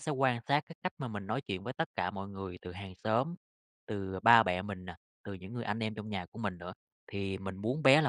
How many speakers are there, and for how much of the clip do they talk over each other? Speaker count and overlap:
one, no overlap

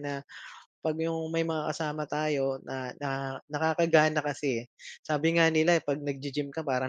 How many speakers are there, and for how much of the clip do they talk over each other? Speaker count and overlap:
one, no overlap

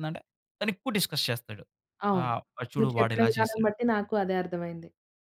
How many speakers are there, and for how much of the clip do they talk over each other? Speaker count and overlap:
two, about 19%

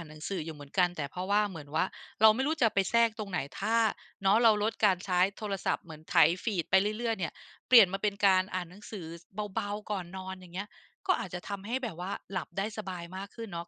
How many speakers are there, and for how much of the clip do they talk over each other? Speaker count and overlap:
one, no overlap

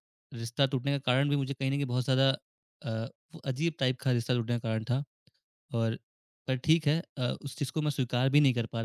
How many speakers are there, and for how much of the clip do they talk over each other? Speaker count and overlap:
one, no overlap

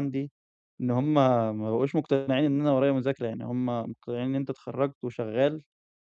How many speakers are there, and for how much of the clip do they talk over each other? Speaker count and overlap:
one, no overlap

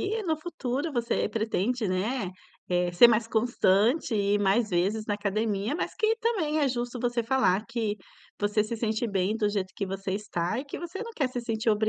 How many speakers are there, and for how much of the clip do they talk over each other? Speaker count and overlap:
one, no overlap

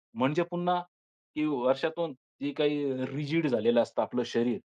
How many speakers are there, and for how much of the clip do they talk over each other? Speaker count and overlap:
one, no overlap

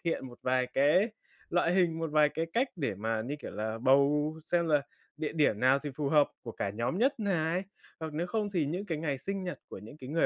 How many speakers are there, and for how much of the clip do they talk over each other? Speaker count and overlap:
one, no overlap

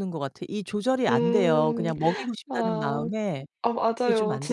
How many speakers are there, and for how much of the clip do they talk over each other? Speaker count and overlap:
two, about 43%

